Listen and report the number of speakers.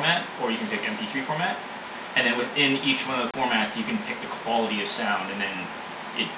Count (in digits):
1